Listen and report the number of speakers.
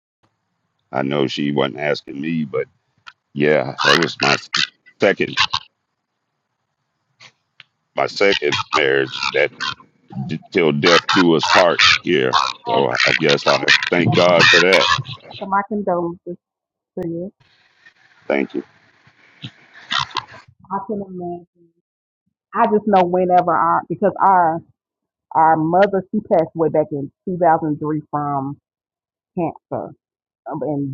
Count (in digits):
2